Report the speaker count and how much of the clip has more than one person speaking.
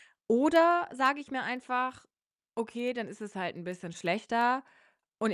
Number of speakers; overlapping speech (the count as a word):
one, no overlap